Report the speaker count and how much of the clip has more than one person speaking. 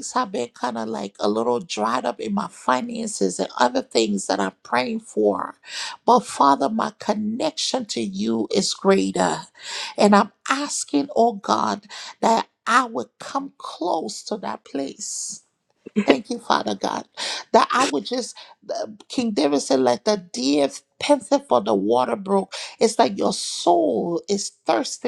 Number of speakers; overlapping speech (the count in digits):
1, no overlap